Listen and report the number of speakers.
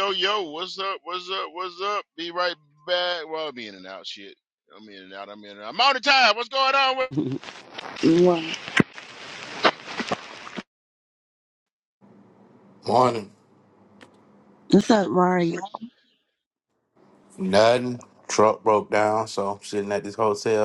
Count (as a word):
three